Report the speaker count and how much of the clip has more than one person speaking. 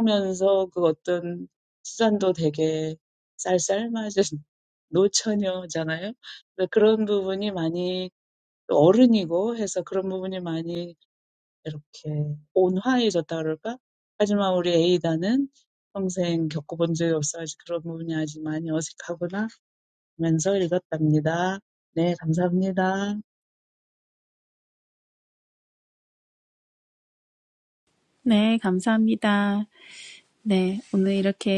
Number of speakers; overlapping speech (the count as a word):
two, no overlap